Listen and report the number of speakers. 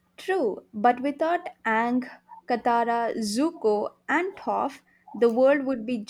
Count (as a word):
one